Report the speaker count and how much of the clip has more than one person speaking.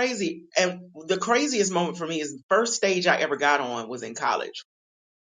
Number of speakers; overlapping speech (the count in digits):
1, no overlap